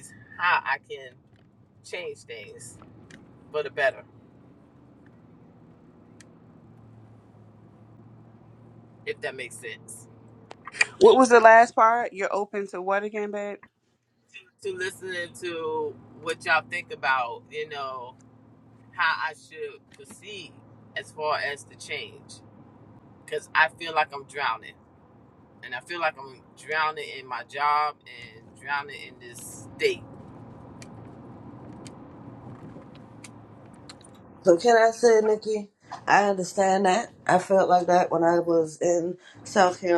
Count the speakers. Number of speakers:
3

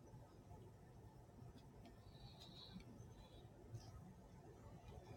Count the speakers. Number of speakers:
0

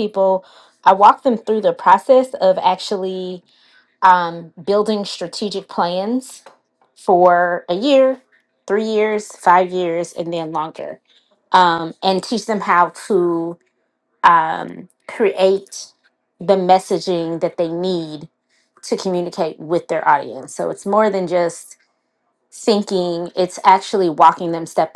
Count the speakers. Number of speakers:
1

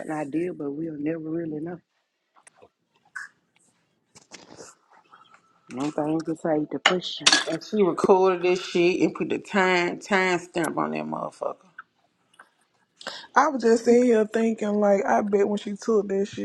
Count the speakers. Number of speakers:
3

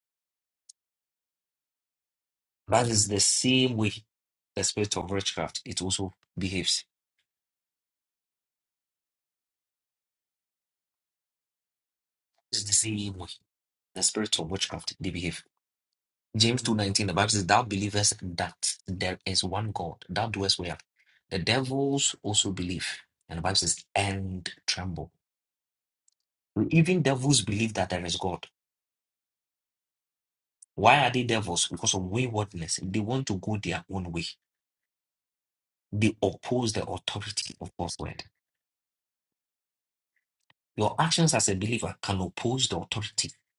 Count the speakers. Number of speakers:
1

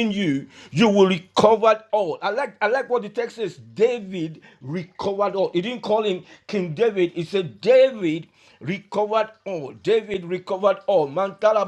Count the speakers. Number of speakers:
1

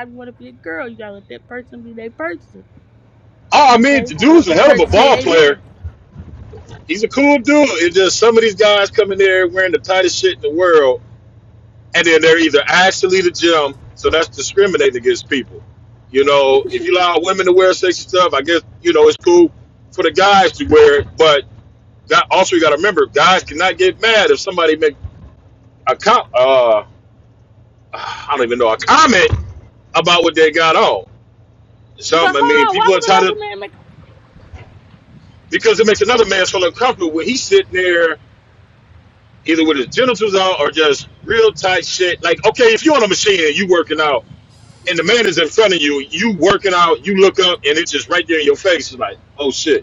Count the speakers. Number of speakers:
2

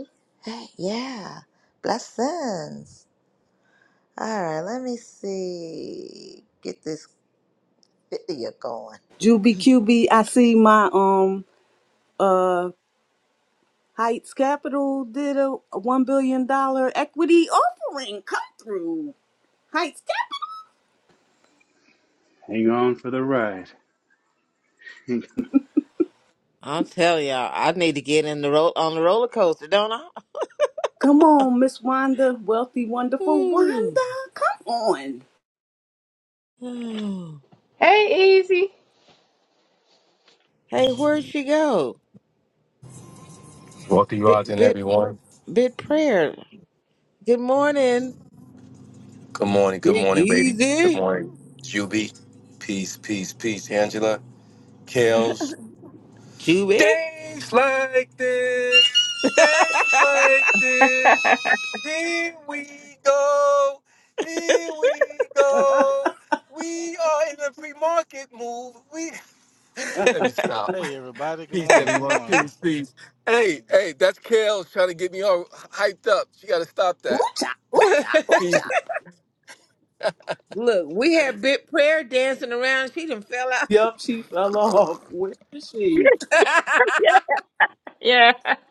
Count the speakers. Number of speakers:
7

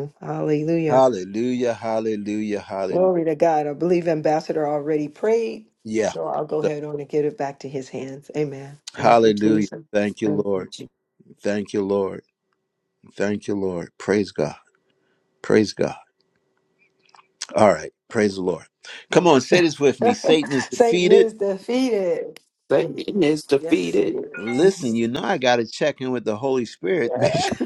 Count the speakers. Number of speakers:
3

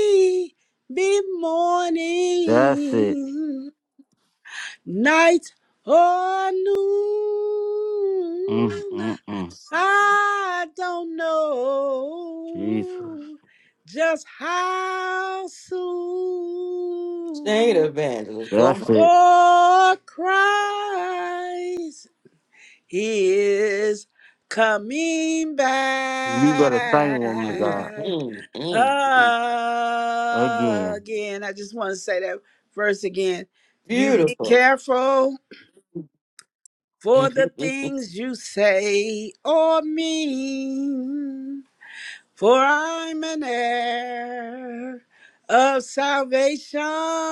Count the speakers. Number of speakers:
3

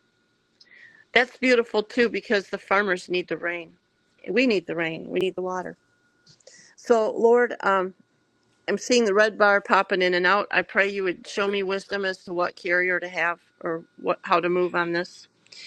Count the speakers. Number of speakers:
1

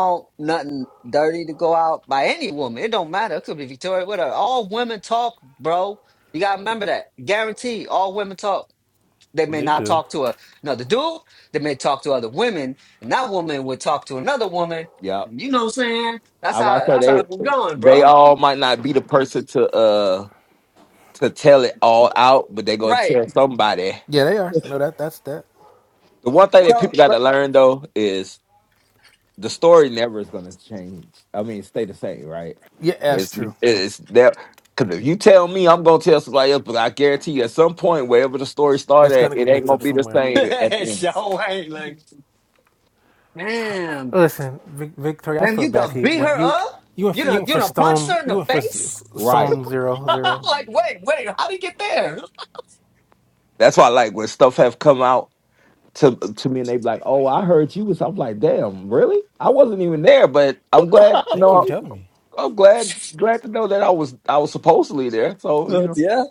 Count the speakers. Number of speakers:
3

